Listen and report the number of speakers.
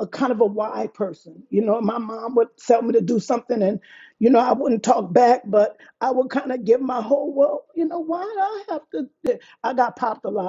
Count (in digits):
1